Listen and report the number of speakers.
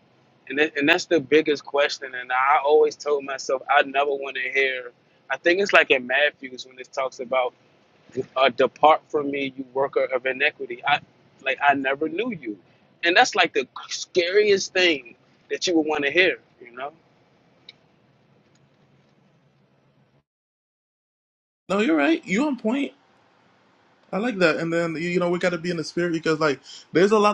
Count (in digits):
2